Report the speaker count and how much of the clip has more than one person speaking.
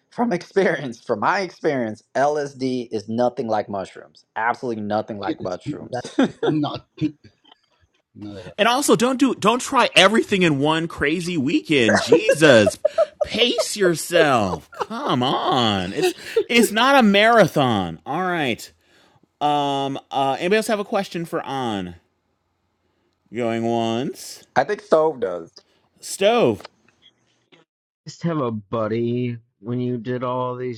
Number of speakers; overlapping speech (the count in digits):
4, about 1%